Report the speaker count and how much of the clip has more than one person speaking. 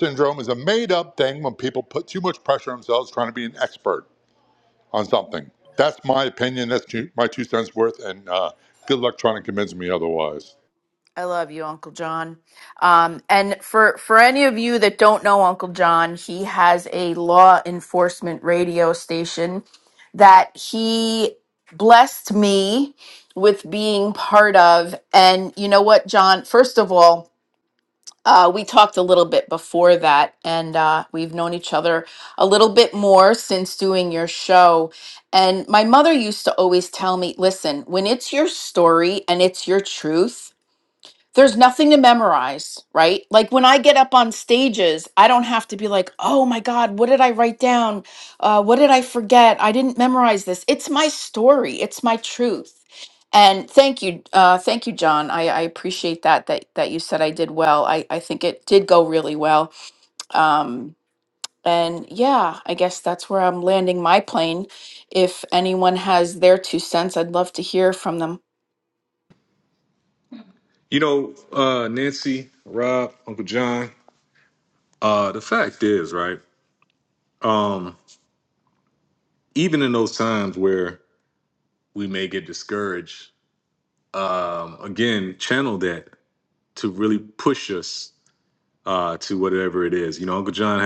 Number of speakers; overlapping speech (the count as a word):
three, no overlap